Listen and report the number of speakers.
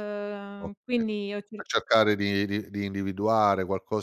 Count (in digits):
2